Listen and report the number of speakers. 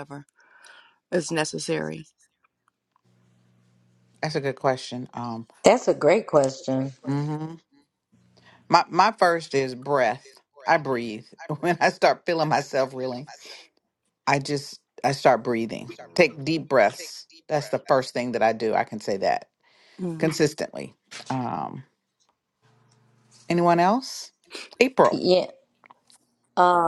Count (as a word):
three